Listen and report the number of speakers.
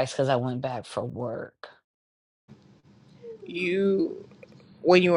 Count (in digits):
2